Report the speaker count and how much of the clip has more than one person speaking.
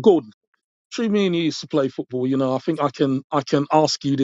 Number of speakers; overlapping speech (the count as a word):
one, no overlap